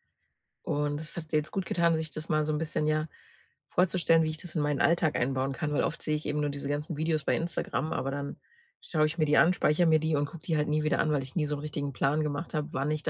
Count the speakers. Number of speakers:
1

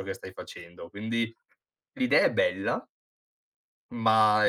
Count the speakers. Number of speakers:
1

